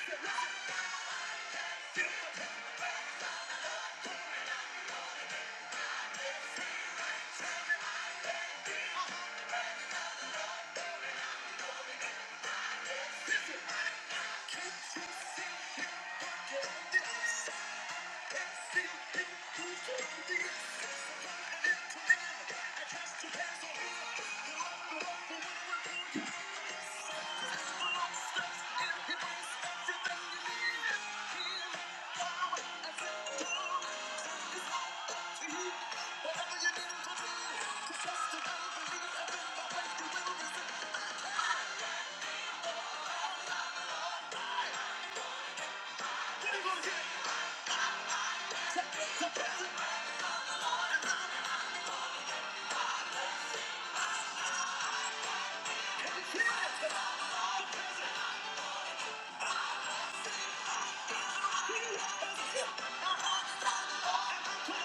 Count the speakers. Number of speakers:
zero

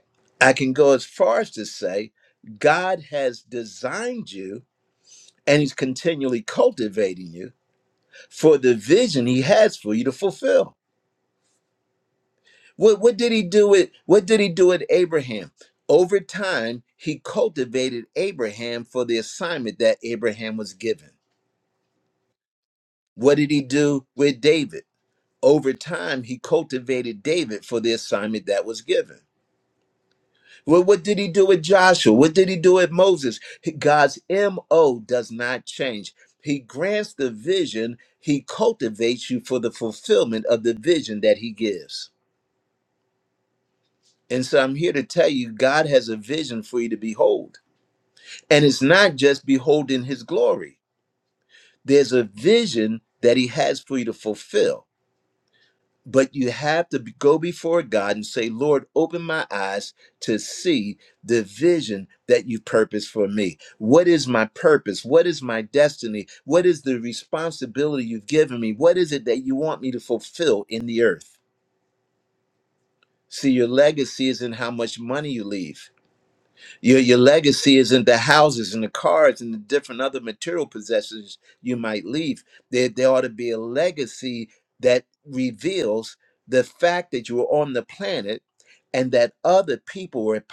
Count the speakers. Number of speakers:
one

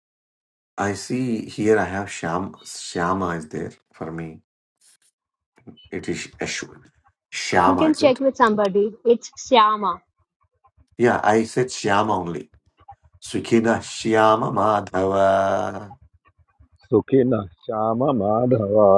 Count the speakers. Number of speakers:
three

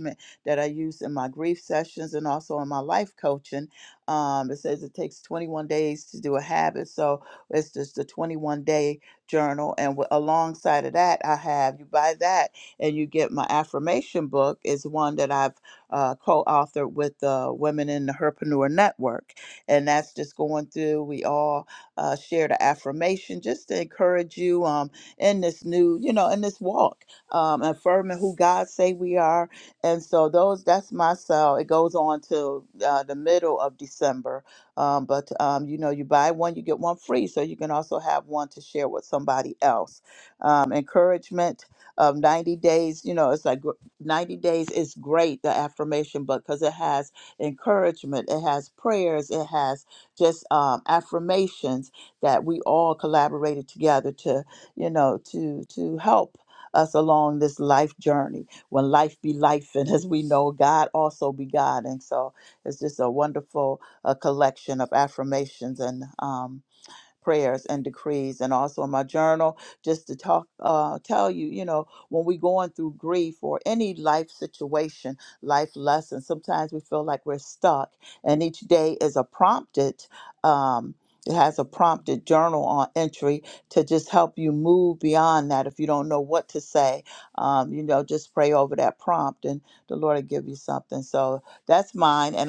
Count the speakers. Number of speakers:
one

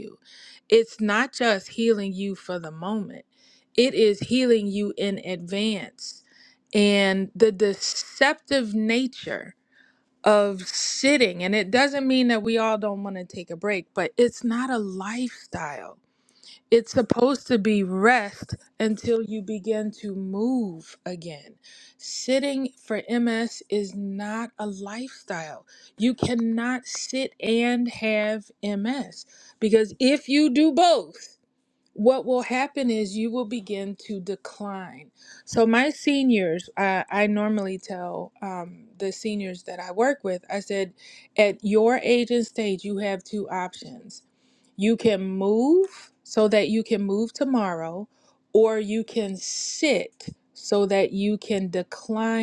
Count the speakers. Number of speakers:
one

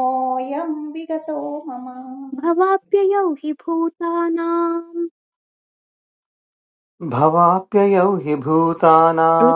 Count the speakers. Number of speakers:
three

